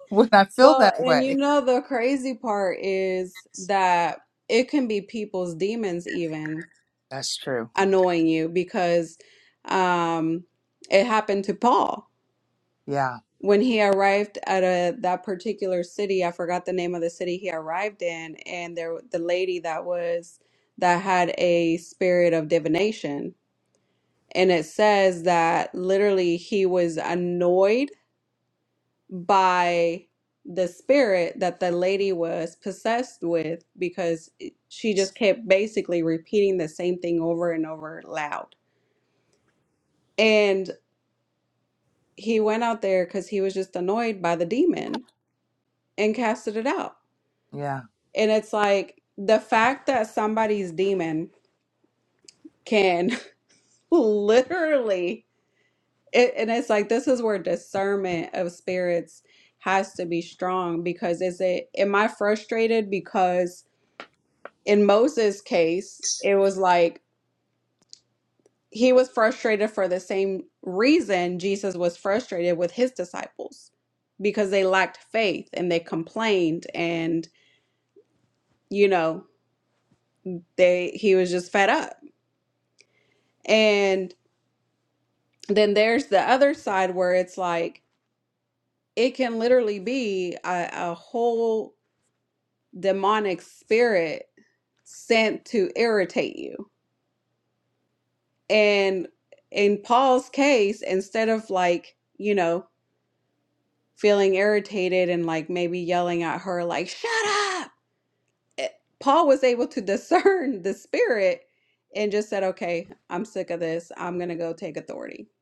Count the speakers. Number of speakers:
2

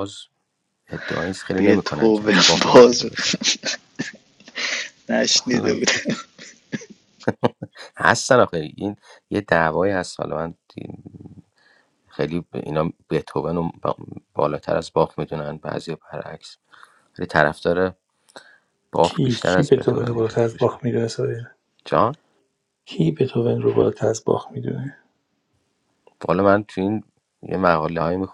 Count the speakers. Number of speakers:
3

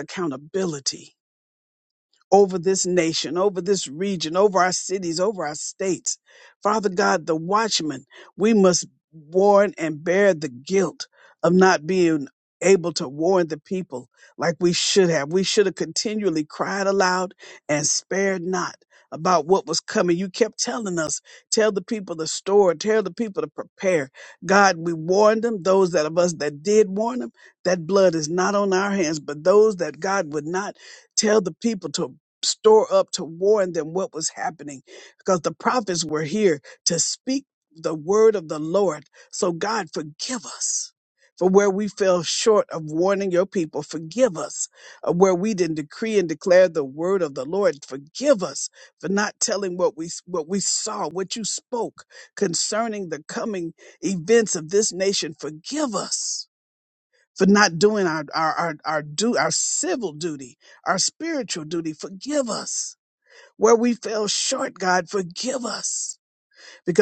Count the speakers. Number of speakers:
1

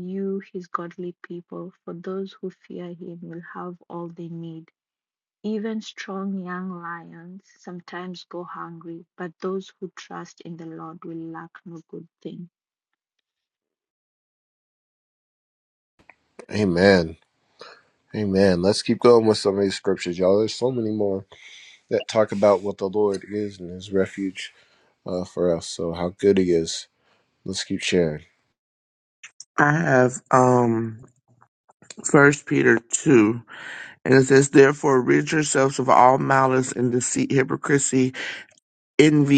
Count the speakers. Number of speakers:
3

